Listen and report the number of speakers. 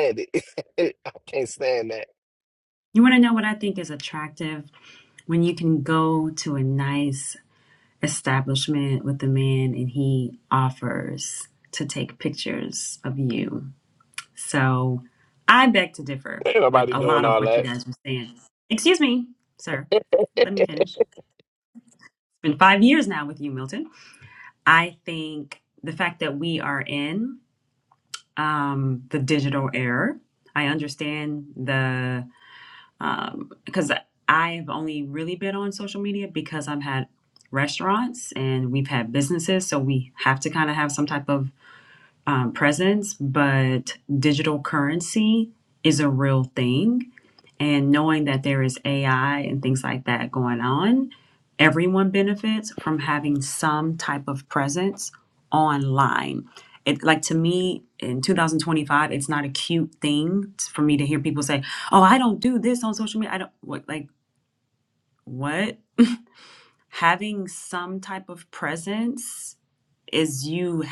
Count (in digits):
2